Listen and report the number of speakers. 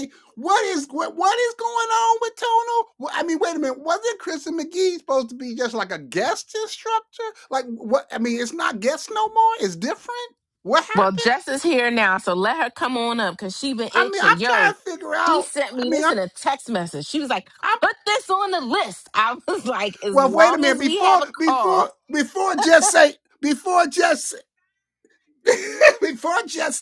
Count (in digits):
2